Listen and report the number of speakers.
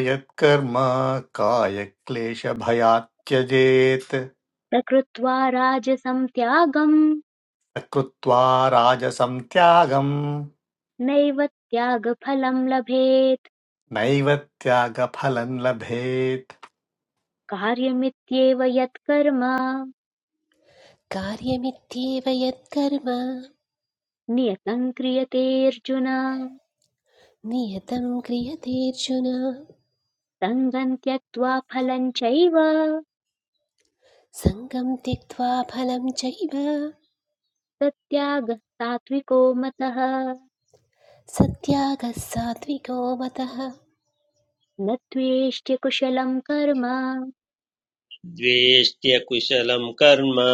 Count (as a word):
four